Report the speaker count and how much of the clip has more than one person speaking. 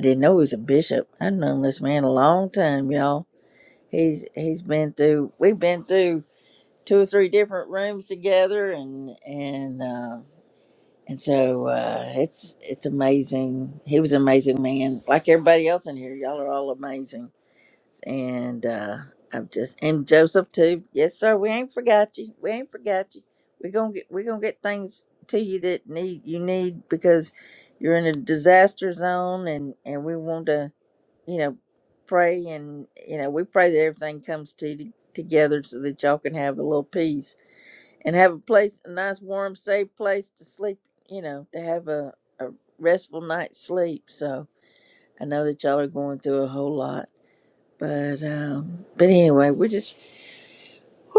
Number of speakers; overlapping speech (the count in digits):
1, no overlap